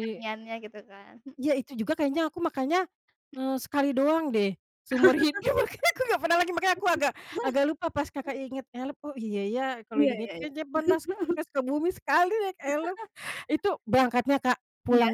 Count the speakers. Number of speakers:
2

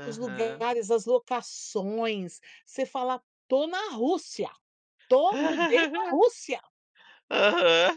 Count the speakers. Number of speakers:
2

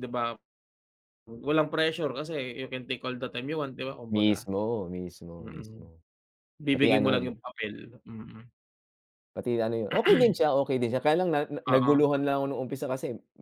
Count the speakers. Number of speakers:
2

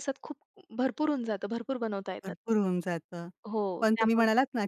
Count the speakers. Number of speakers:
2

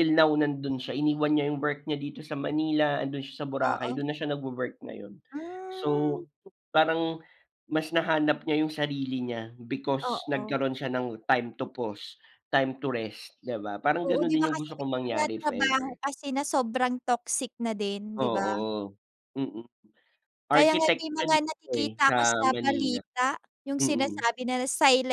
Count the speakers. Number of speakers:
2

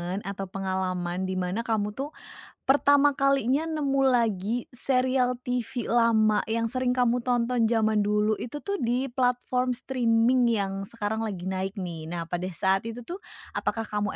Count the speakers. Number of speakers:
1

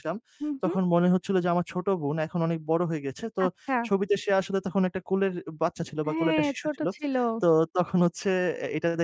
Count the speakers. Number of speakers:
2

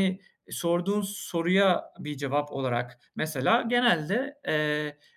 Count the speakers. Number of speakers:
1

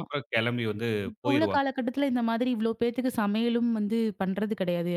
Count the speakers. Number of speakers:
2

